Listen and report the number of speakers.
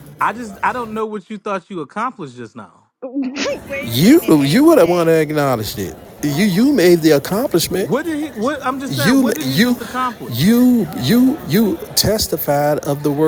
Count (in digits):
3